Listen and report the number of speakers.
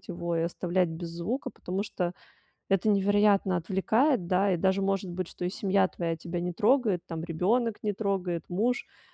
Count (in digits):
1